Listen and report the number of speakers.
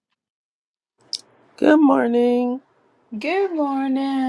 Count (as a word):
two